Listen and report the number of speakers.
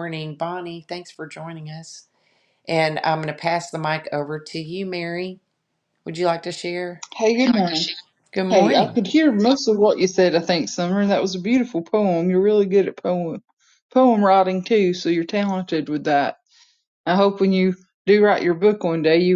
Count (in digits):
2